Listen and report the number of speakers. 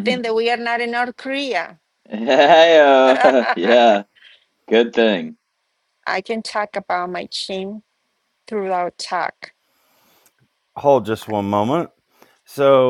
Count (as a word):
three